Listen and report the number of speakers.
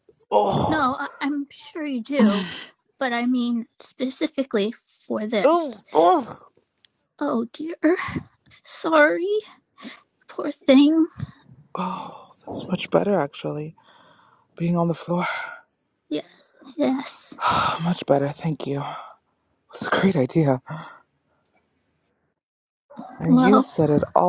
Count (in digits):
2